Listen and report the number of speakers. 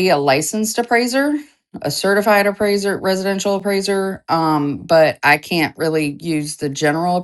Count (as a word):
one